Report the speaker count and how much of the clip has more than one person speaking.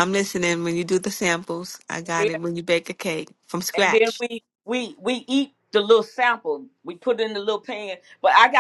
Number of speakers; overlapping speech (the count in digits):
2, about 7%